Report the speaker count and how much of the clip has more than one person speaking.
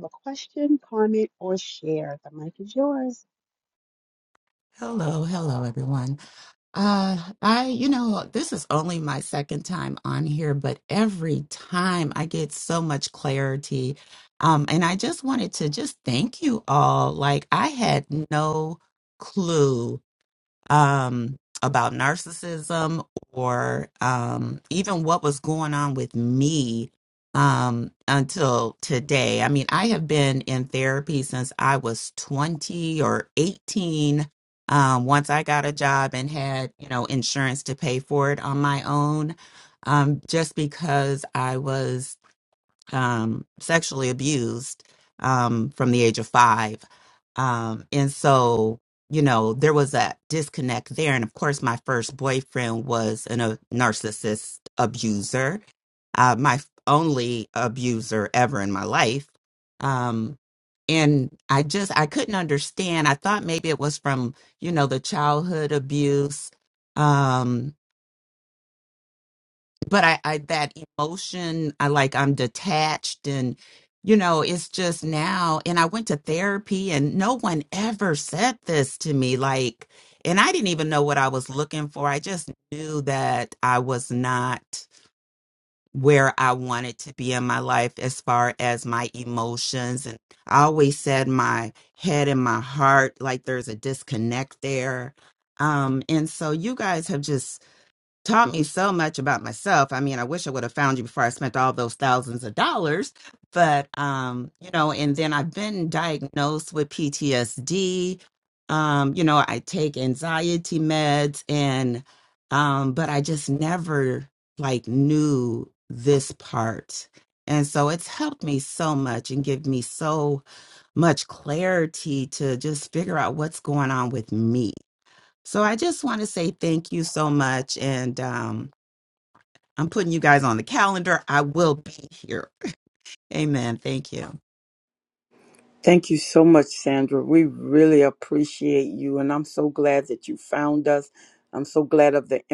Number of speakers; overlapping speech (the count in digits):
3, no overlap